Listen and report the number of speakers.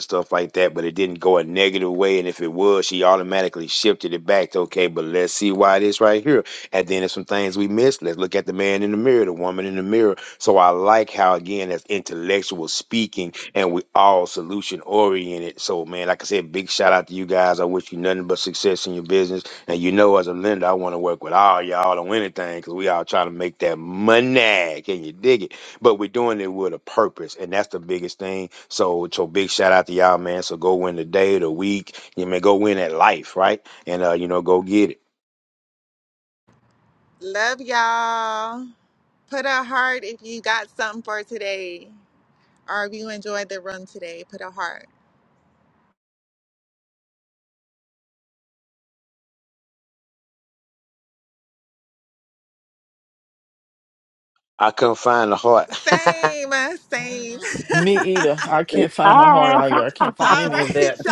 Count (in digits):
3